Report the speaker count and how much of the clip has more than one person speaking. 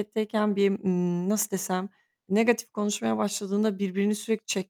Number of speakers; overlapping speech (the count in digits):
1, no overlap